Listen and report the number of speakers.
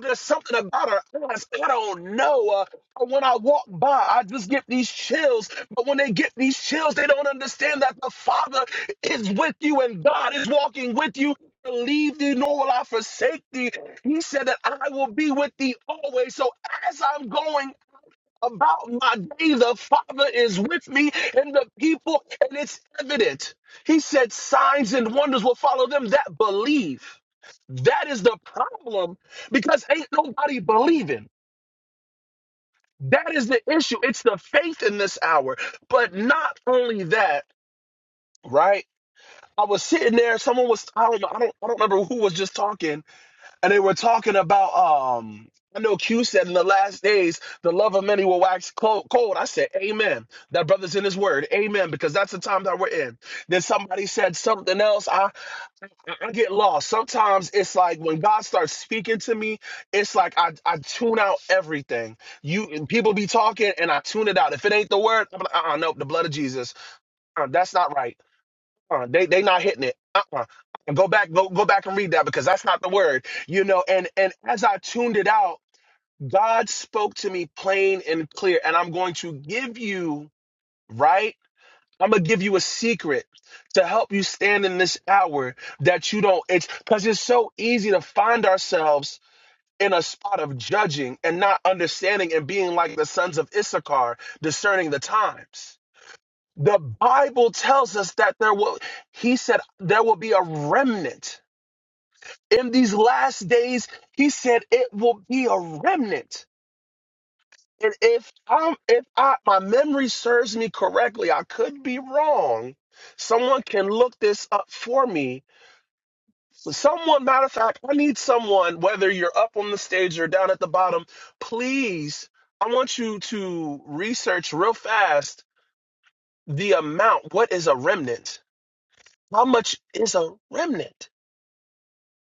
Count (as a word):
one